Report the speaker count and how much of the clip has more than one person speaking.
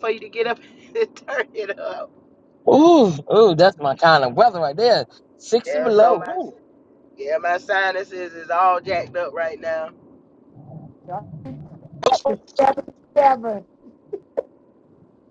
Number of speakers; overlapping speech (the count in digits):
3, about 5%